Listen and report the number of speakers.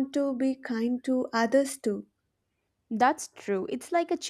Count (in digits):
2